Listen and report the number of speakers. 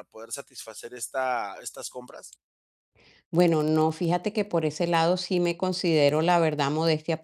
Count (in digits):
2